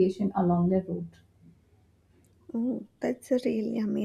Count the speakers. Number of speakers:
2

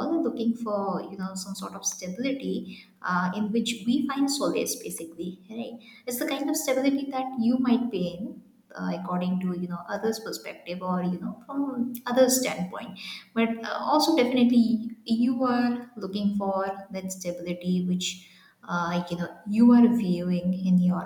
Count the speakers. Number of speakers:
1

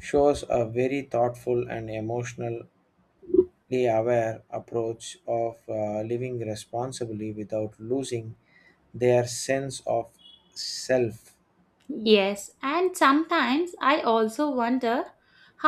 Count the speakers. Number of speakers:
2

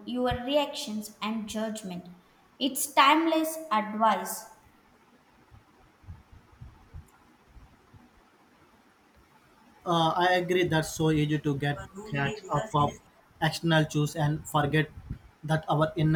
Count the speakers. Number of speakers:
2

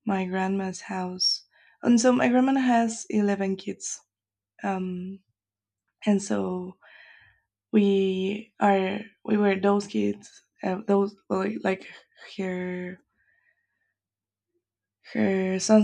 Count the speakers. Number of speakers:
1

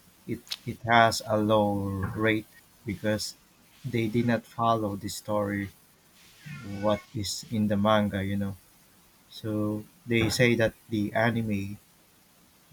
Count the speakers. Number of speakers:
1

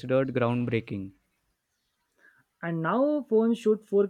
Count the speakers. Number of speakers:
2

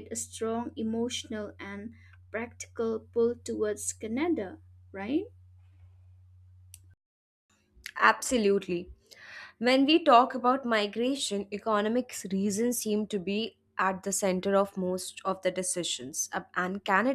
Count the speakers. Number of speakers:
2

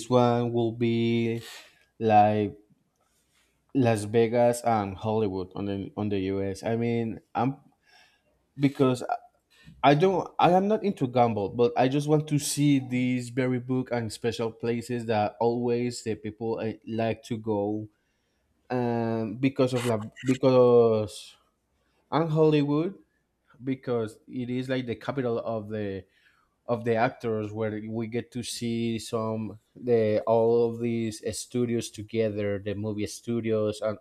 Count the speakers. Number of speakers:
1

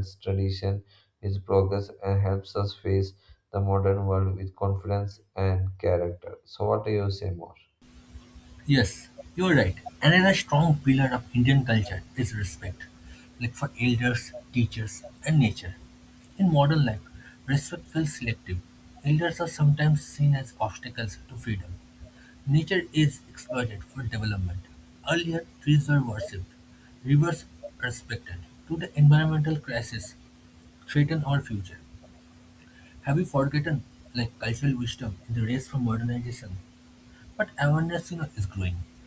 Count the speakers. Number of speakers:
2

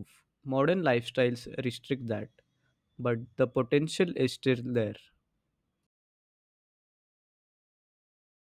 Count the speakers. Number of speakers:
1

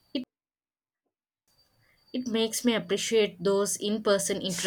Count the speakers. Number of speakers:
1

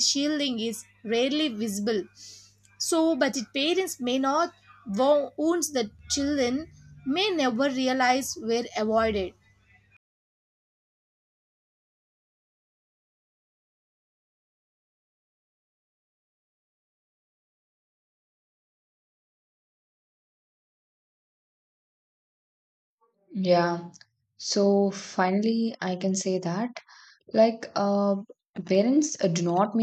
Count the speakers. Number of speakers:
2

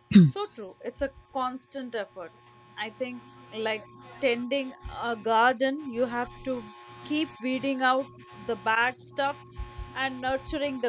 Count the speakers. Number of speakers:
1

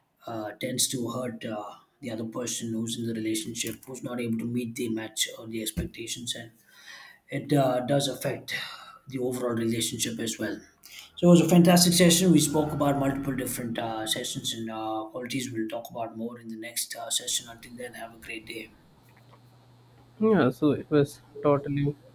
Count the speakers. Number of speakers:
2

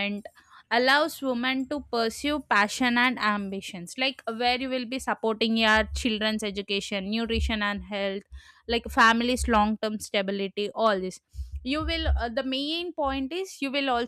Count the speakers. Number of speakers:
1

